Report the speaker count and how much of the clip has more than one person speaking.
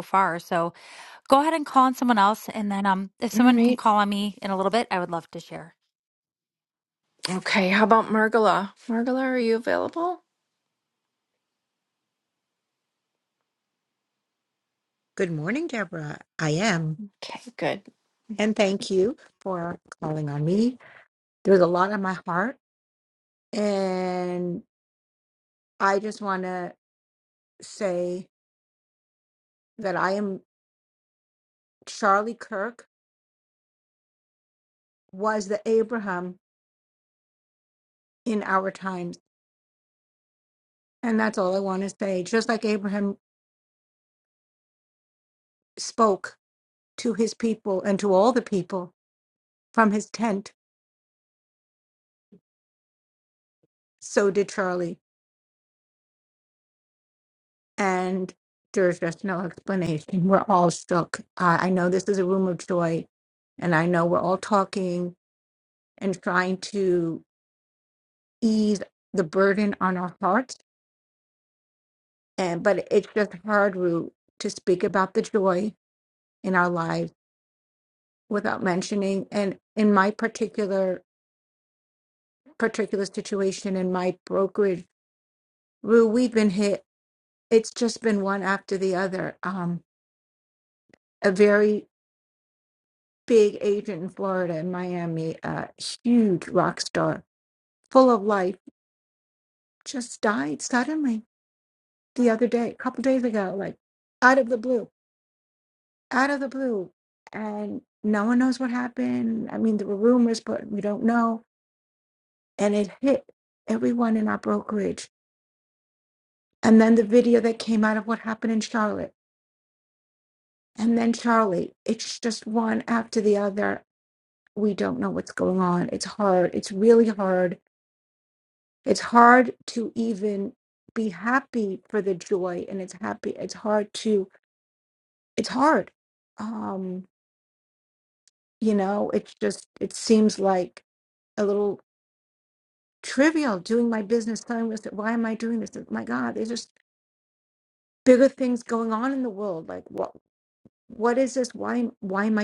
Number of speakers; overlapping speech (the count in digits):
3, under 1%